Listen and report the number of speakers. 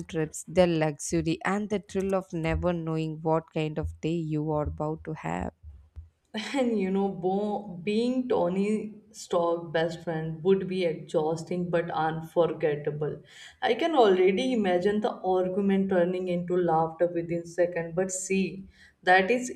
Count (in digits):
2